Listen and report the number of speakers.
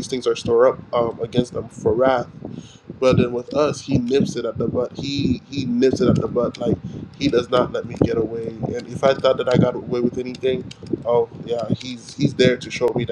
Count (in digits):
1